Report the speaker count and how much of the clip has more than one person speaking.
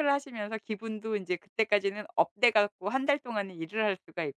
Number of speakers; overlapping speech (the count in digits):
1, no overlap